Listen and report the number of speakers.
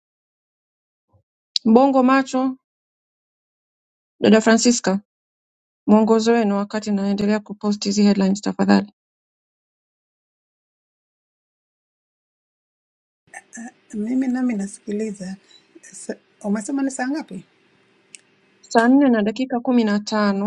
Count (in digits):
2